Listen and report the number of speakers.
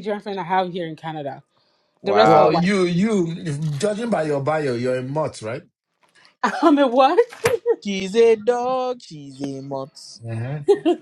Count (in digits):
3